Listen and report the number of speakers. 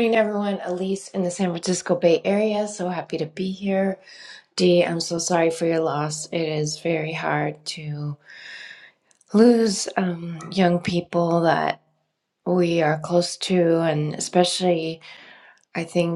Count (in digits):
1